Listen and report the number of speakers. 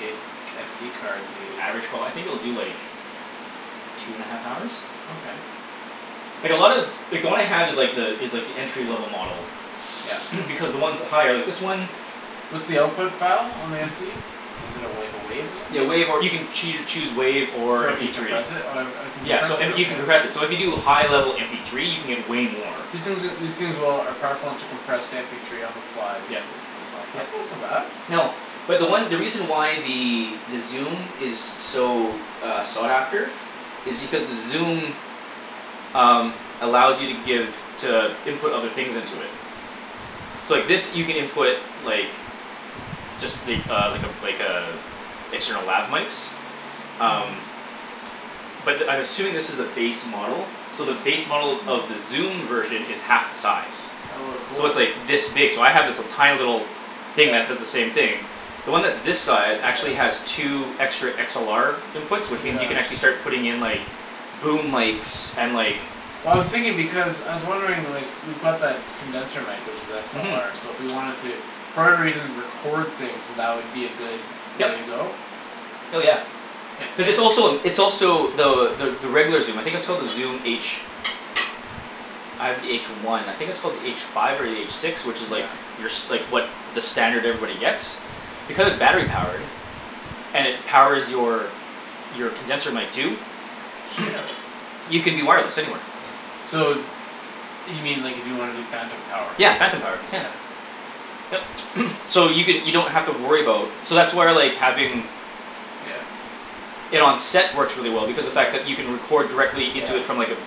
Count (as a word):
two